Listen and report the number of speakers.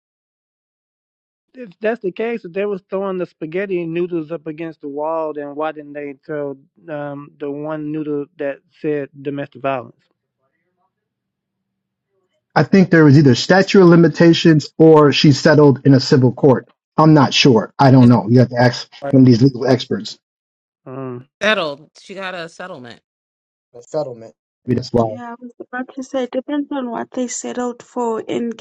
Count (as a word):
four